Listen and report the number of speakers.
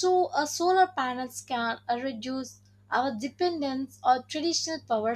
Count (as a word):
one